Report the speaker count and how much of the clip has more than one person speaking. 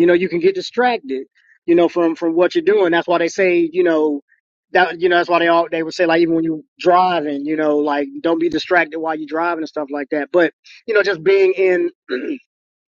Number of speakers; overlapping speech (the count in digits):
1, no overlap